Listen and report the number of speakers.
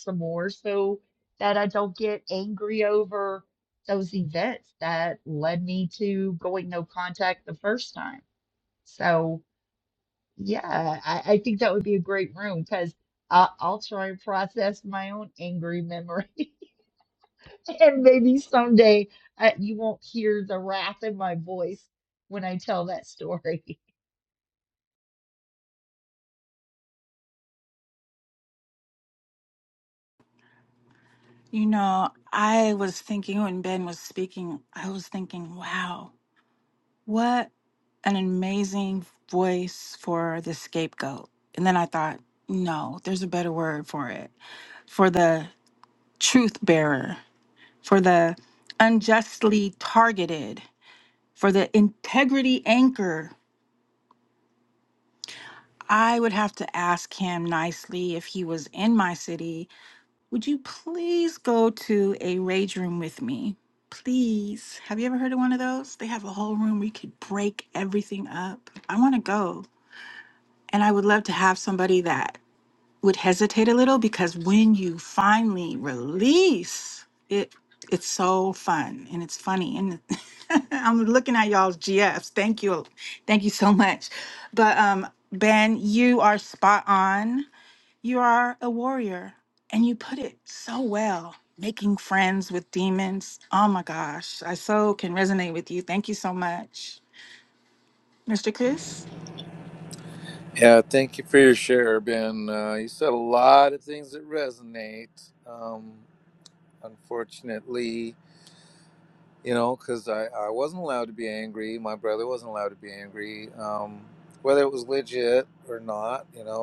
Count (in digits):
3